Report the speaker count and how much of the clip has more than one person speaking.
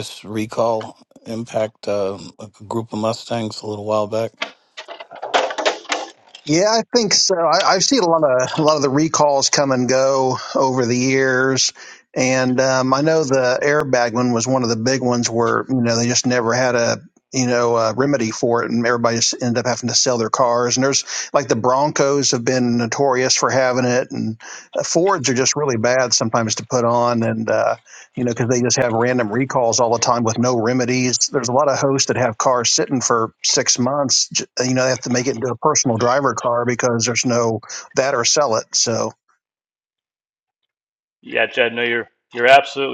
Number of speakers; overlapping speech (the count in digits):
3, no overlap